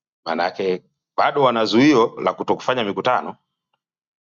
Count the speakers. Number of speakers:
1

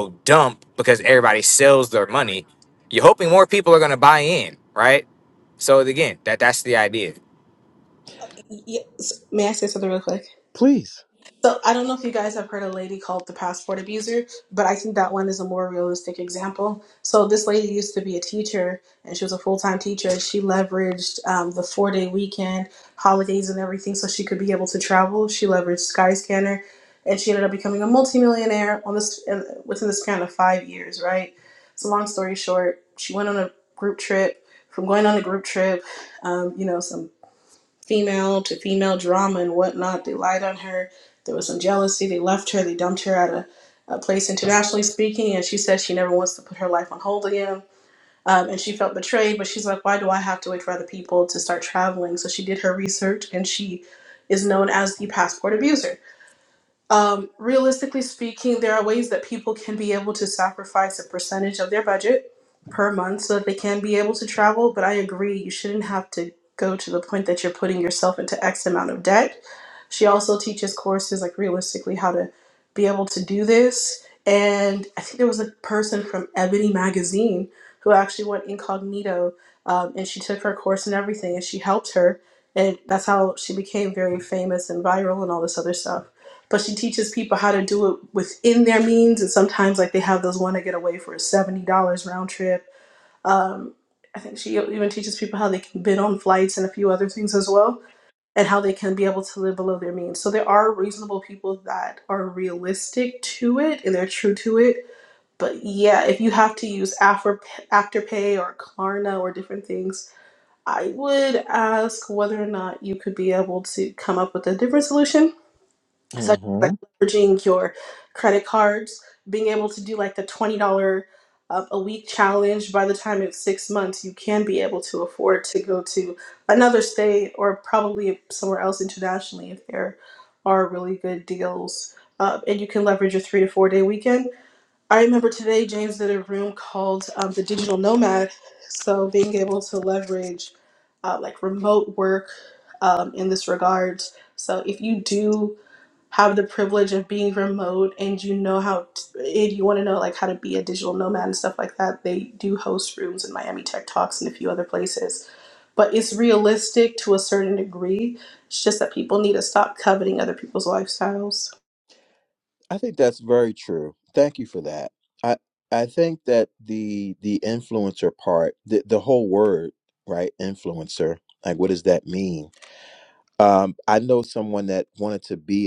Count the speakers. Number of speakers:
3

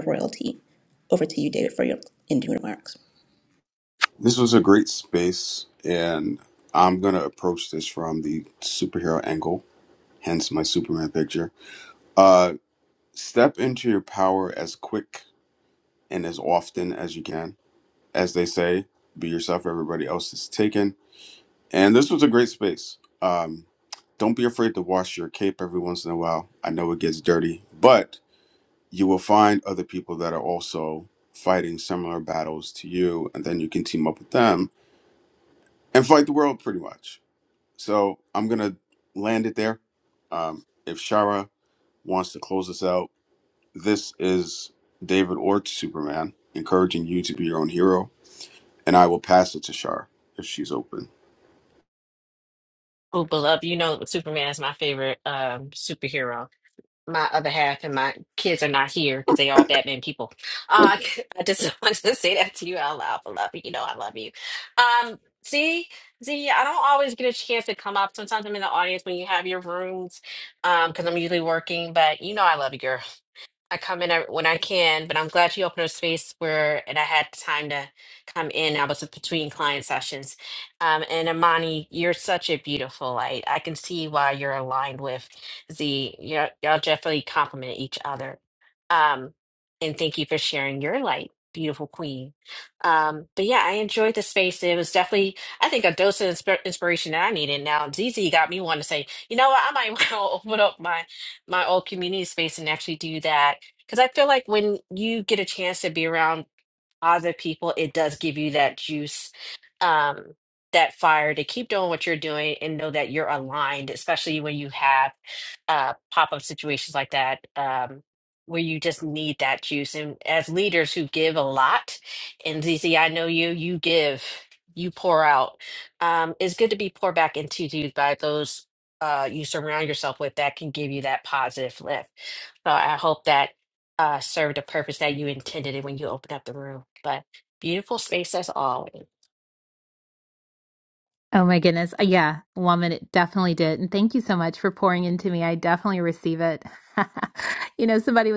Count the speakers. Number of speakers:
4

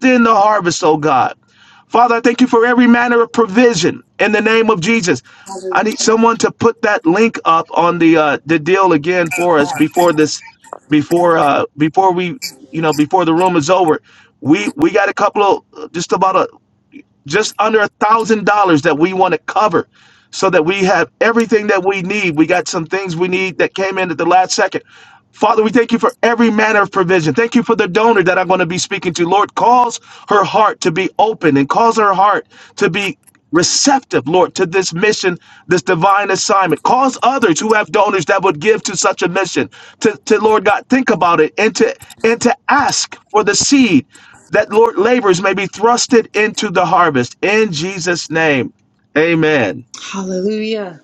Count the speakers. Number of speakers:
2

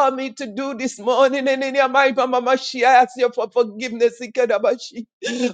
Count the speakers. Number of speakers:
1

